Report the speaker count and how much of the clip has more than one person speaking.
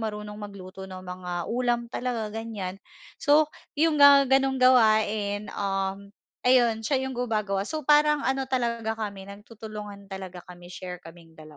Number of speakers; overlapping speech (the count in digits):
1, no overlap